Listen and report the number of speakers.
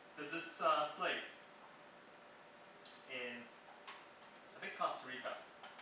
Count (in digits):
1